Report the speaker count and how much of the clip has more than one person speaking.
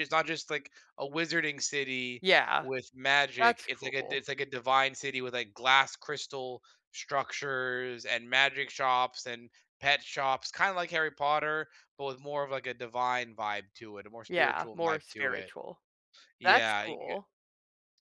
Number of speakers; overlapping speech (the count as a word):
two, about 15%